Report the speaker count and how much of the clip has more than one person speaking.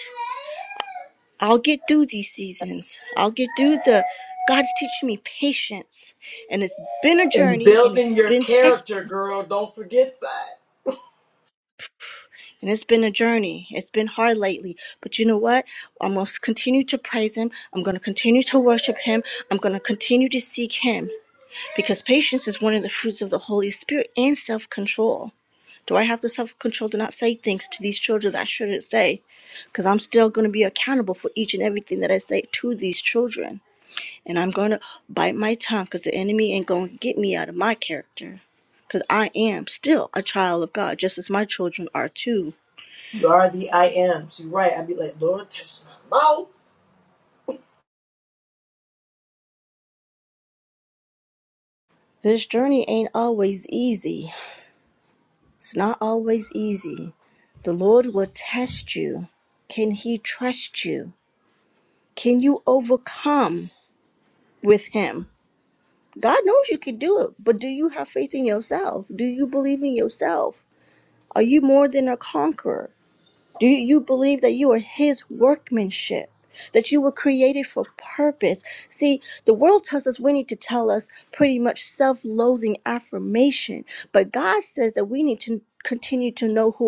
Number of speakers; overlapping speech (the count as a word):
two, about 2%